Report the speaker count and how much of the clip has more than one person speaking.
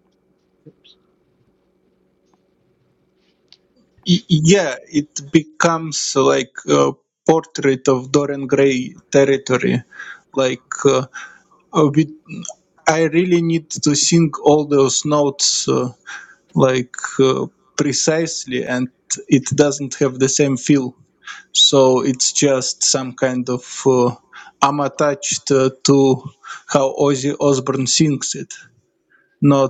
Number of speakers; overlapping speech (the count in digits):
1, no overlap